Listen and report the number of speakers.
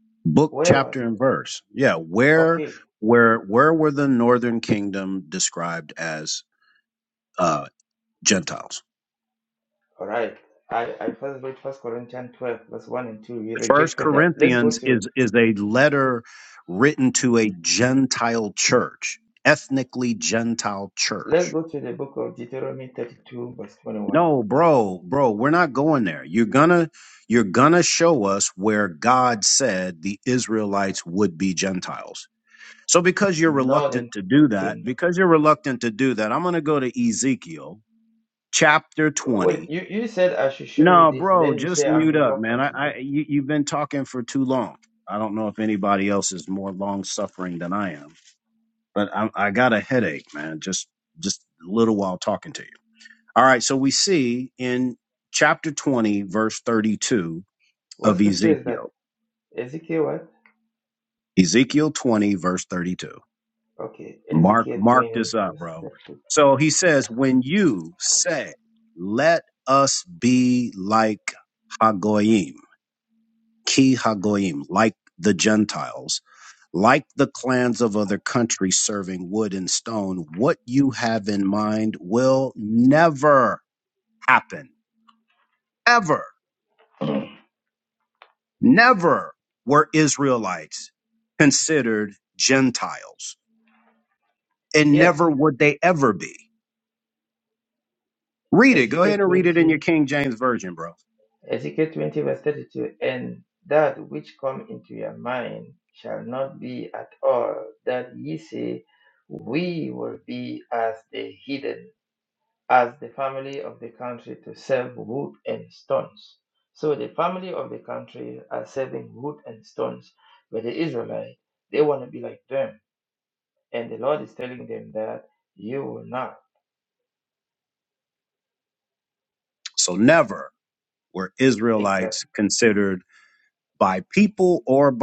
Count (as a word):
two